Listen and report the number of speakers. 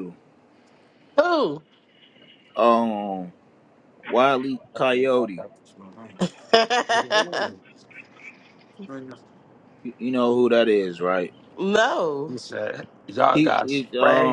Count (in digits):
3